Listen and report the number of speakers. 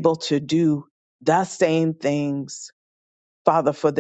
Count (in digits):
1